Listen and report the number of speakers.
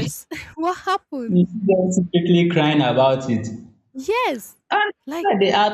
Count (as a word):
two